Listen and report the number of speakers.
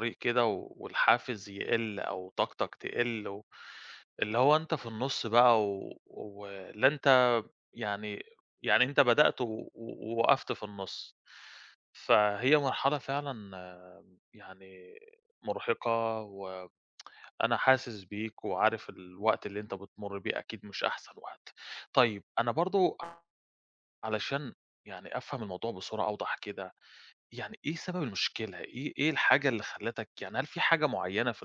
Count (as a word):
one